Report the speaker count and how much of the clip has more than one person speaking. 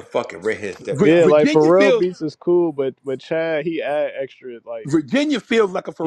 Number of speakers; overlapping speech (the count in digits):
3, about 19%